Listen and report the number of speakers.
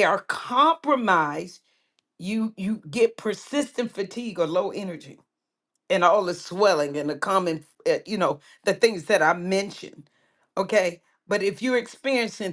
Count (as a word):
one